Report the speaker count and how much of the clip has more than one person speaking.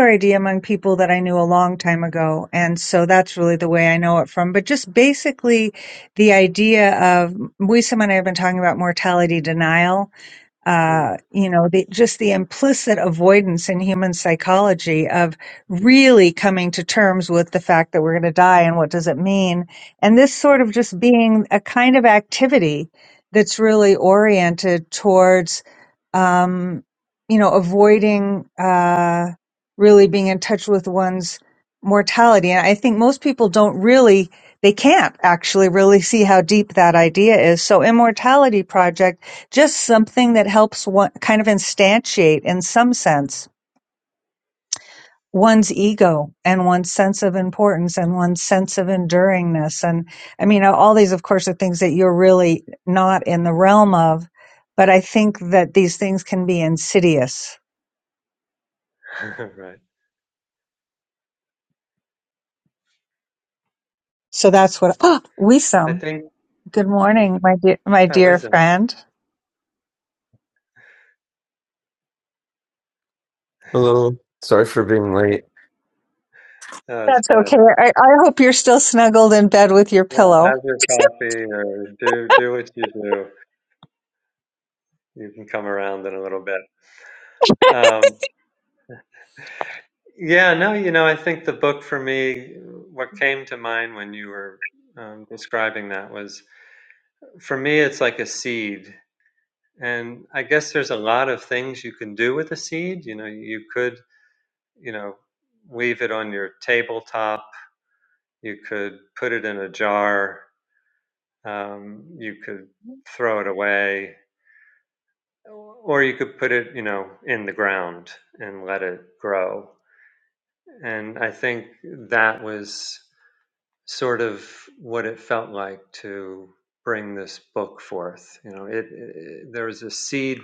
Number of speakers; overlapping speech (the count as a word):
three, about 2%